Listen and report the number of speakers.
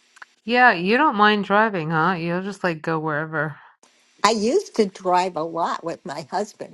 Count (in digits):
2